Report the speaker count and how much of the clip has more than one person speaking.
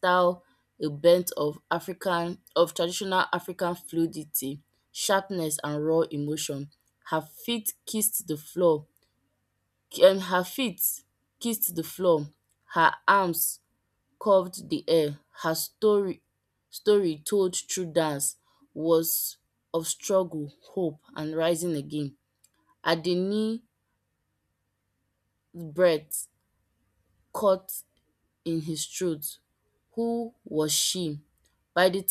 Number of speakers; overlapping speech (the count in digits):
1, no overlap